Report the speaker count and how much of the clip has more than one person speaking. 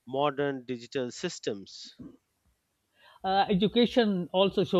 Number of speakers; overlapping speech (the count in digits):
2, no overlap